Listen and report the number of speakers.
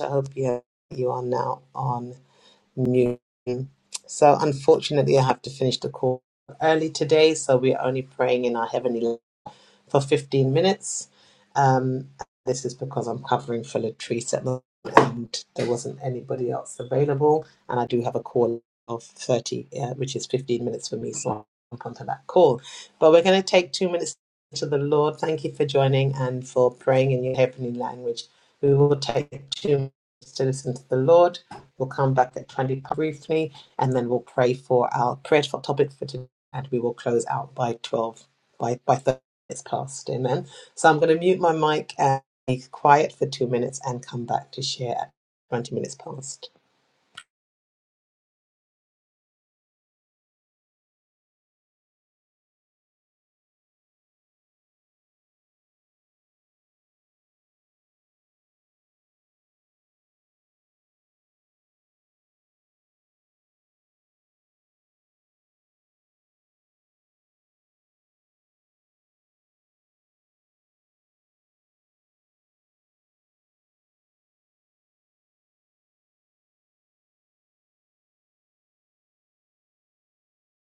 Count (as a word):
one